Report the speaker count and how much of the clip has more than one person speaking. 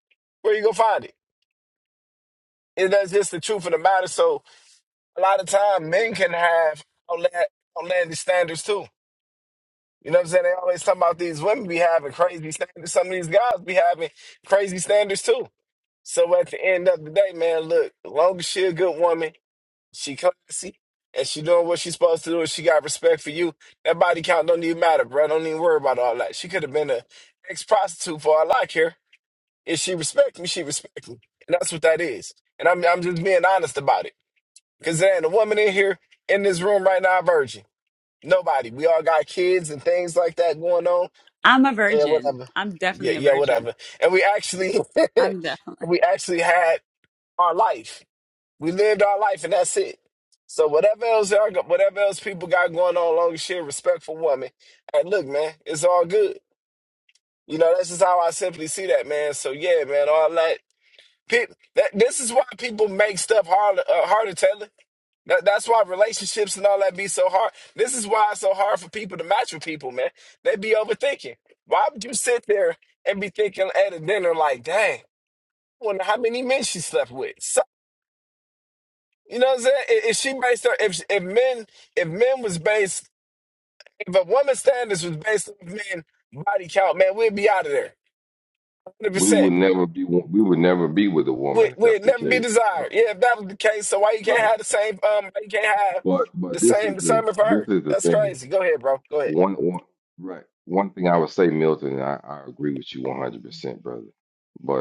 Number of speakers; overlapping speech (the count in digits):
3, about 5%